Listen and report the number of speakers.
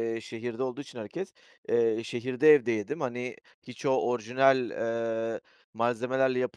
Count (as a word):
one